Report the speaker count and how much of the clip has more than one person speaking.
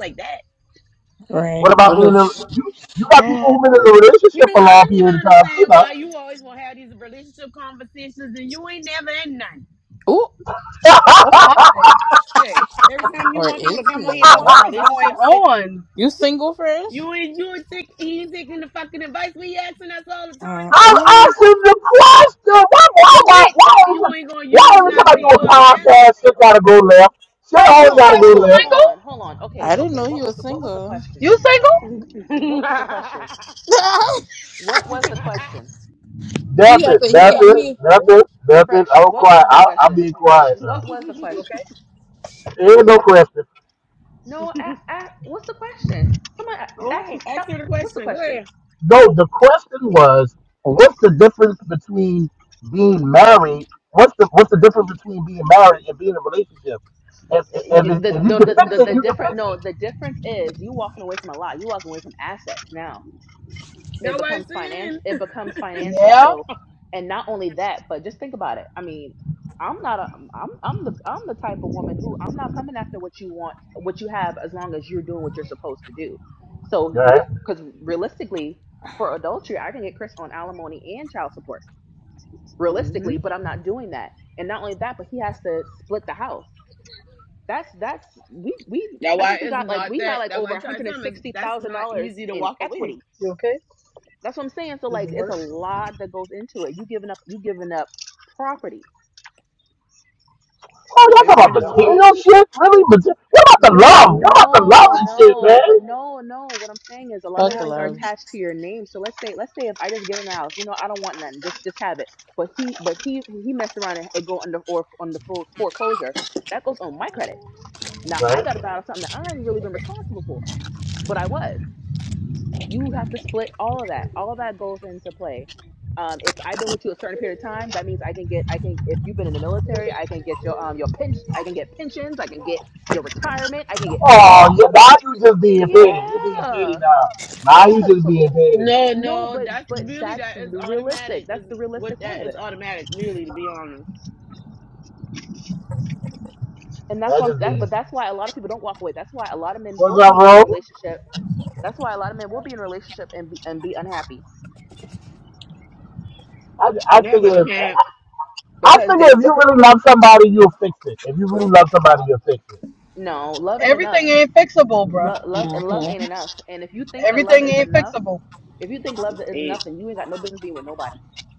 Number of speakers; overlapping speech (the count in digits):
5, about 22%